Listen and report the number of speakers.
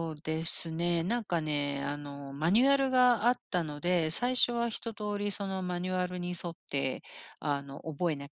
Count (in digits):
1